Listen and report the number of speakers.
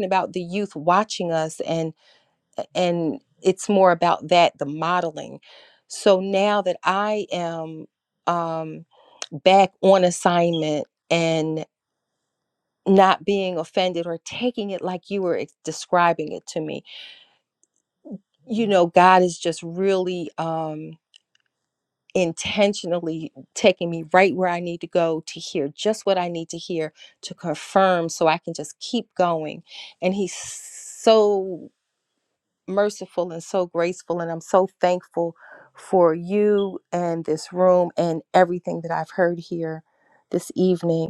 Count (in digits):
1